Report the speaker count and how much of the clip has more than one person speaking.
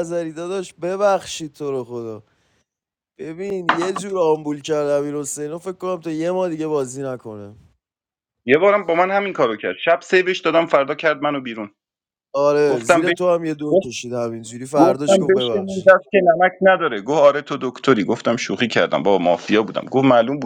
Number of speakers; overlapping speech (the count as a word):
two, about 7%